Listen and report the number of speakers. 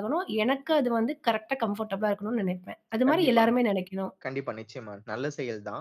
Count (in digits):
2